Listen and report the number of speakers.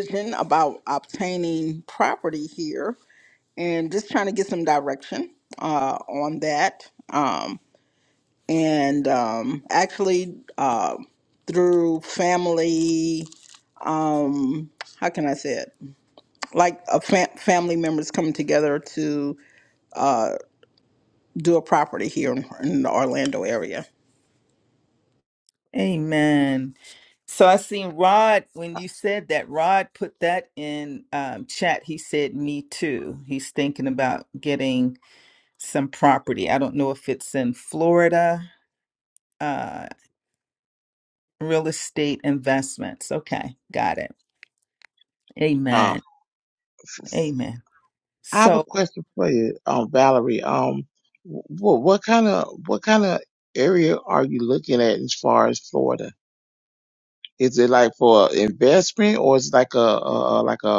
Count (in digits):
3